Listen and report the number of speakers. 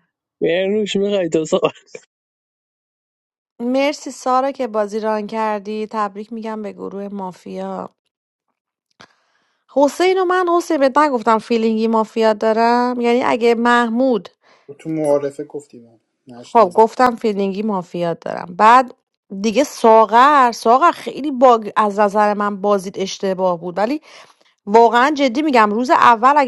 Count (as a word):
three